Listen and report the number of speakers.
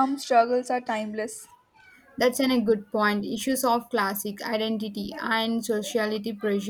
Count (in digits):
2